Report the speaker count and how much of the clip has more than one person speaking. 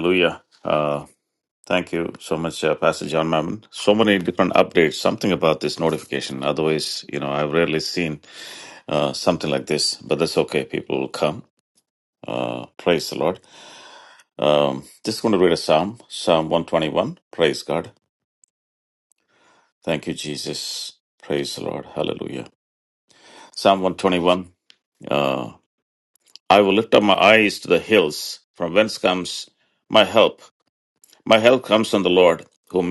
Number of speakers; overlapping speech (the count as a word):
one, no overlap